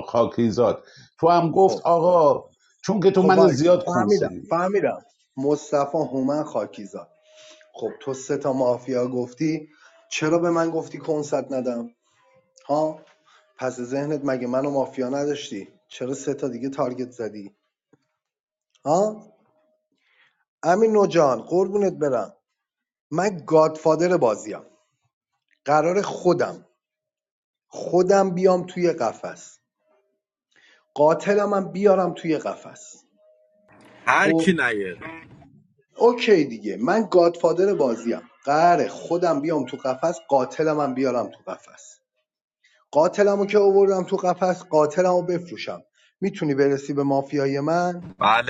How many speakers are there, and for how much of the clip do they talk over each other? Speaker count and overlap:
3, about 4%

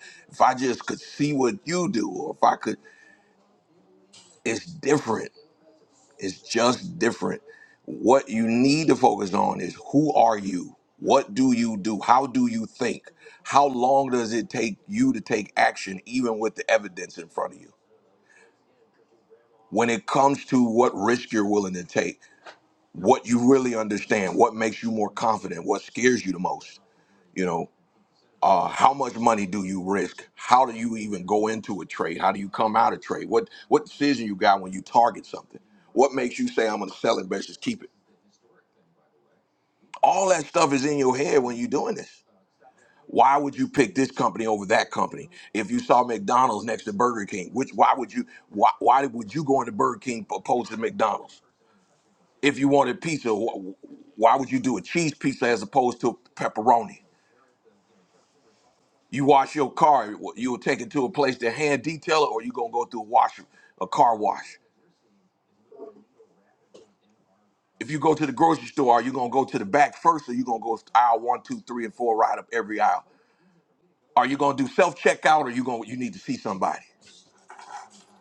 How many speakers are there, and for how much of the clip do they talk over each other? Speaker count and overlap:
1, no overlap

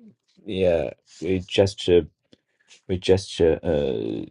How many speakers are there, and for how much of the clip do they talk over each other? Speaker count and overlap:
1, no overlap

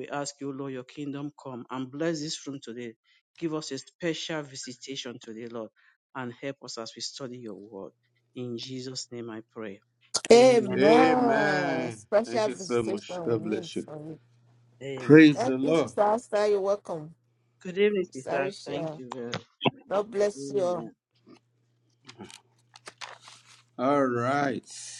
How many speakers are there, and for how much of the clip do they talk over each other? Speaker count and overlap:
3, about 18%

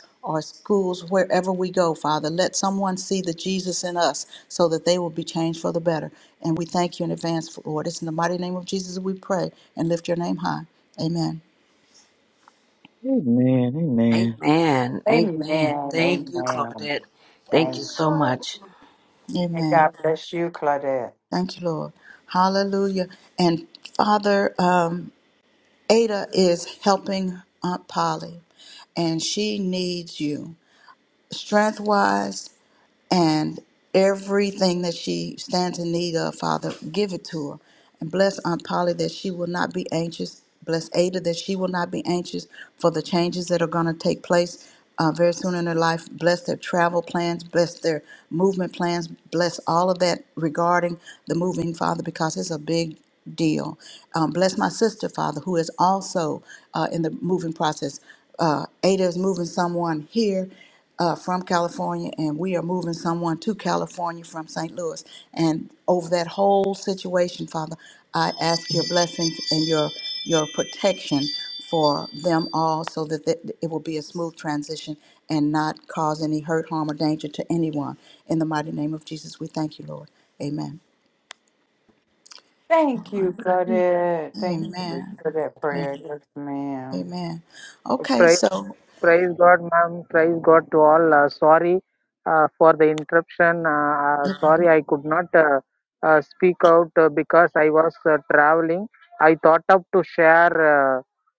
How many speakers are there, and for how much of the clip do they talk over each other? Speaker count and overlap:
5, about 4%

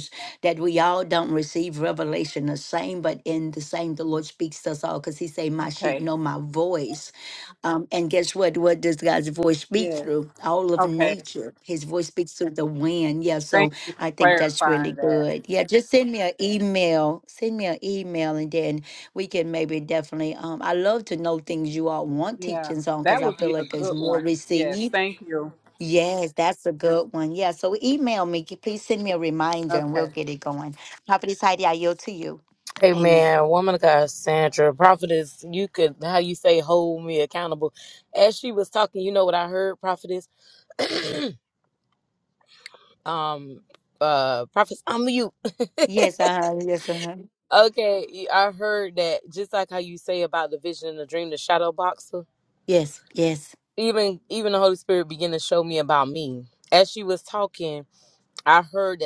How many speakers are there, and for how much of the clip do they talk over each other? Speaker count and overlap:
3, about 10%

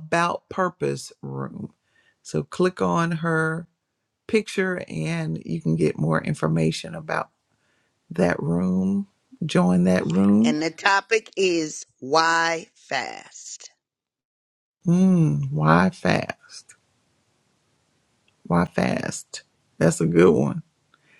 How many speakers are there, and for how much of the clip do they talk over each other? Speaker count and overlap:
2, about 1%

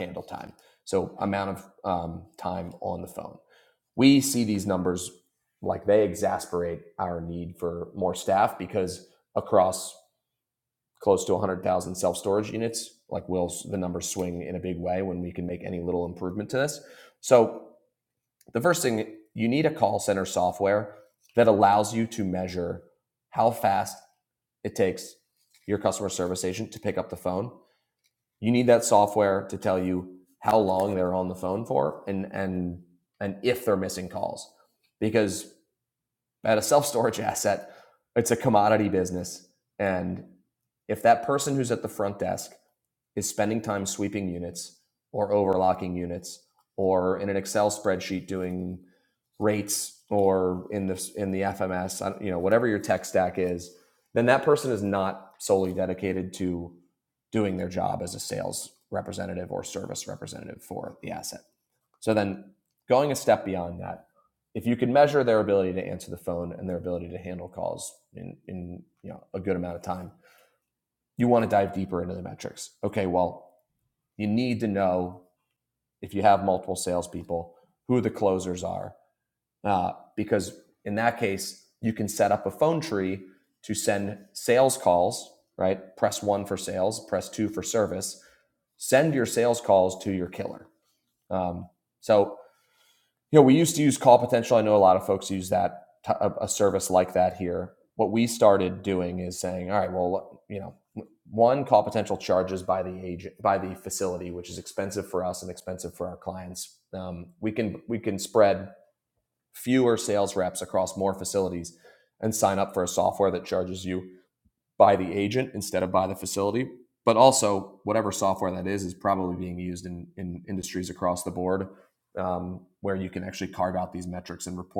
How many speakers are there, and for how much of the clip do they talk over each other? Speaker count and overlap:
1, no overlap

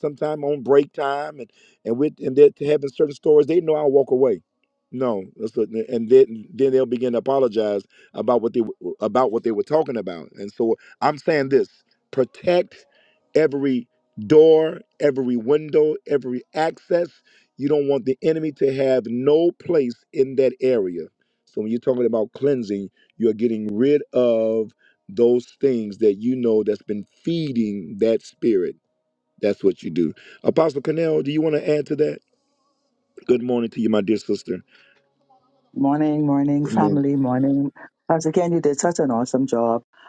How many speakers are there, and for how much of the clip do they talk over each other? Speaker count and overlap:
2, about 1%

